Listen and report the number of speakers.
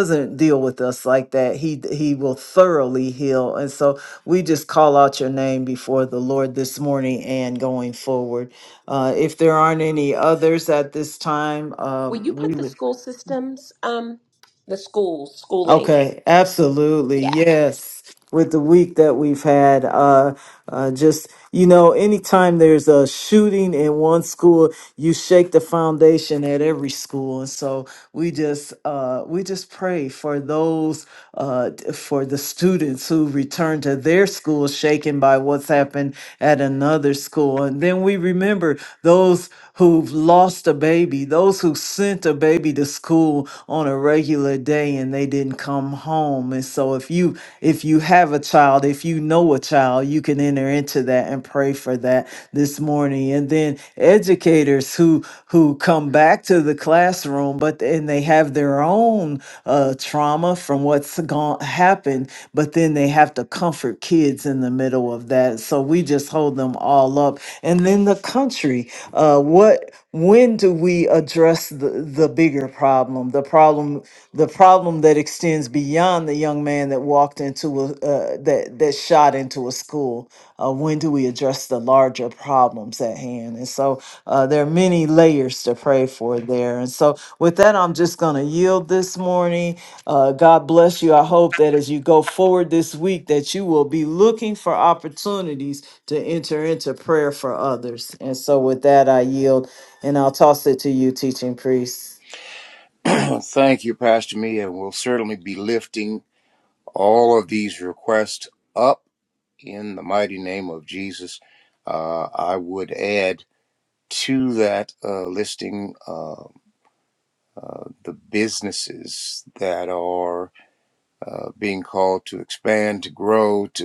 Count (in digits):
3